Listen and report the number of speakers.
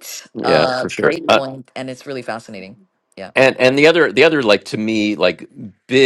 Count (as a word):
two